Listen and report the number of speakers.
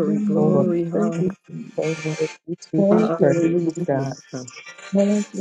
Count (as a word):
three